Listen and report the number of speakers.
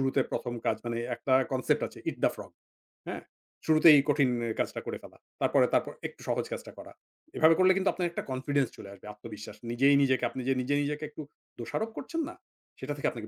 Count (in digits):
1